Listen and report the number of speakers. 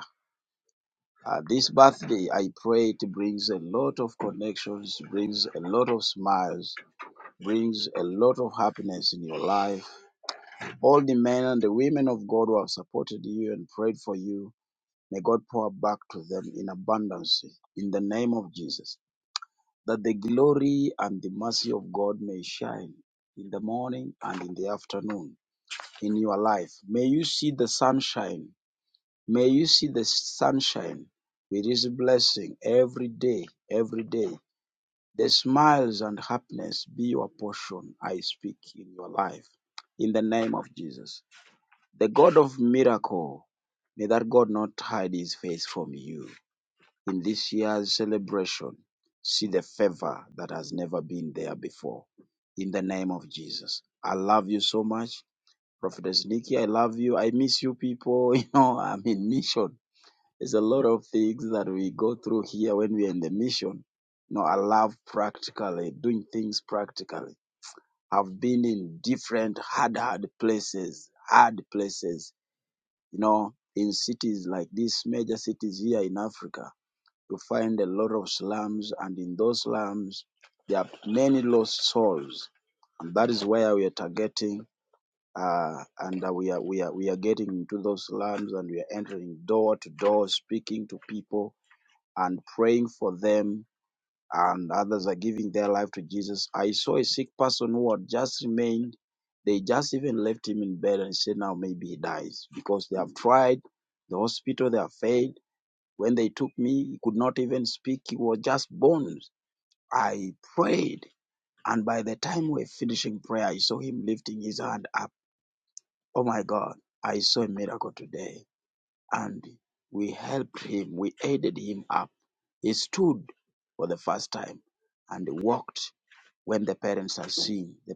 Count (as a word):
one